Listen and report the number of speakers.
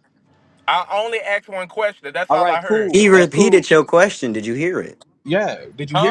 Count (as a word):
three